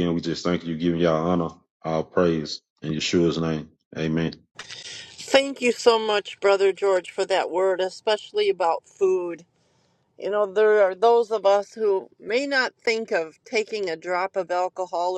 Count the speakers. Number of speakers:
2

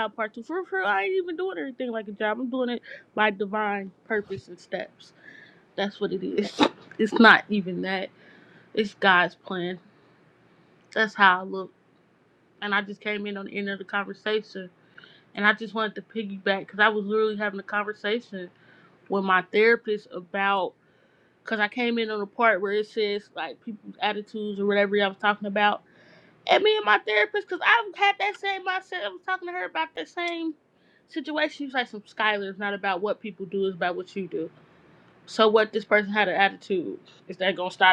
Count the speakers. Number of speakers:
1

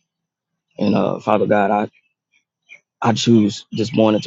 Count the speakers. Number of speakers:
1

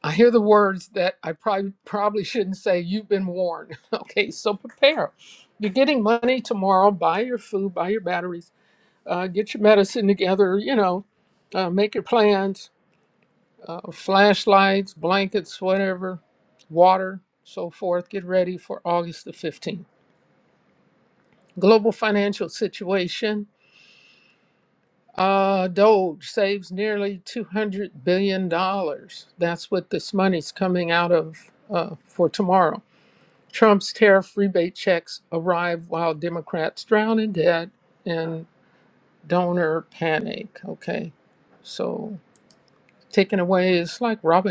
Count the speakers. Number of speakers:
1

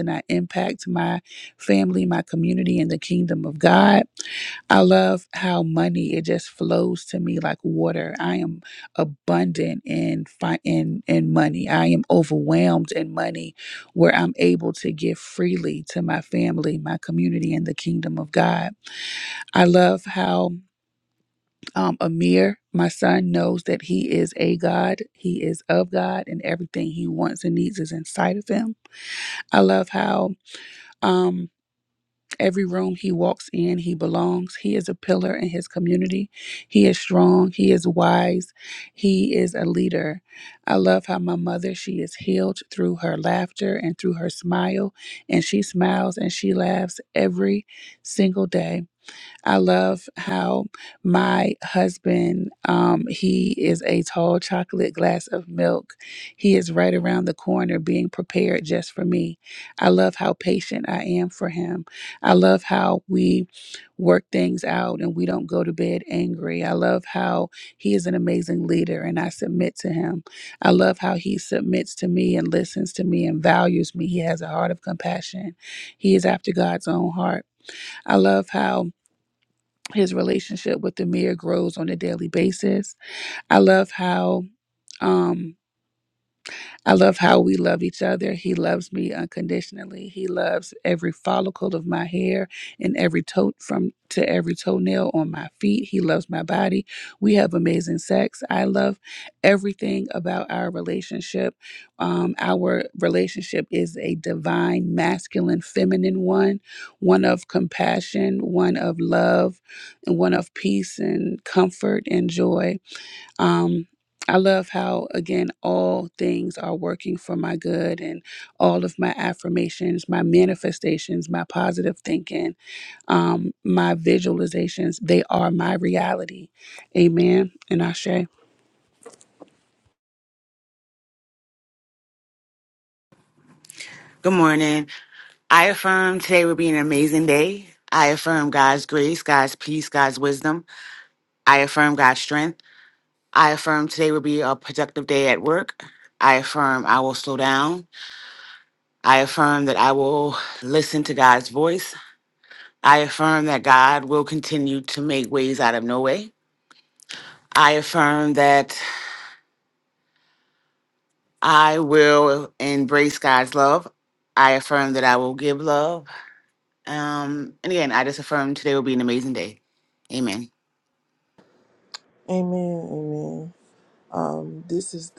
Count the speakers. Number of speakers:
3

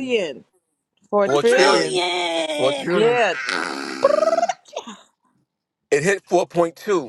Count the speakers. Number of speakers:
3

